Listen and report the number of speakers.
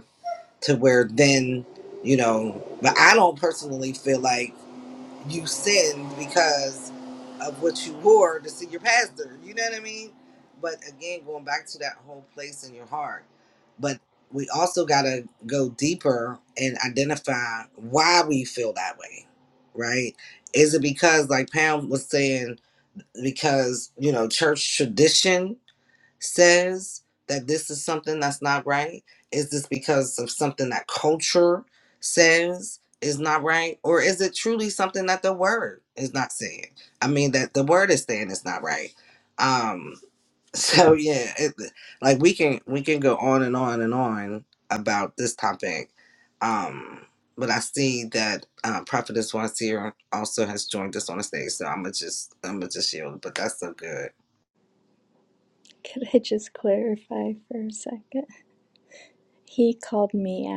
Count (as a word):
two